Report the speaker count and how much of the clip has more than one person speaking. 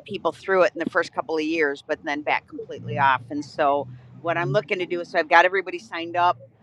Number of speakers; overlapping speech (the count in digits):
1, no overlap